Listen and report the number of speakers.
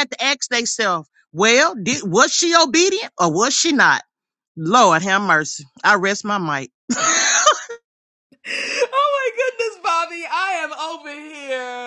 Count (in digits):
2